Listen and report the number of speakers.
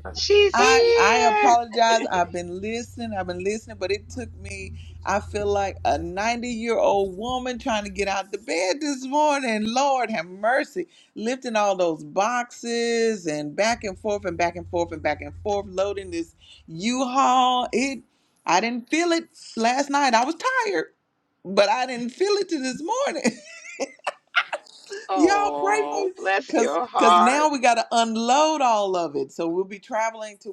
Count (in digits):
2